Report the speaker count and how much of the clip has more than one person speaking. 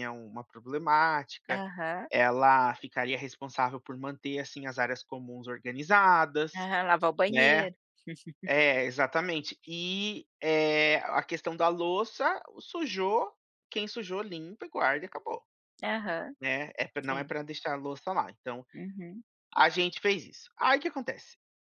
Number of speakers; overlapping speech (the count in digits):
2, about 3%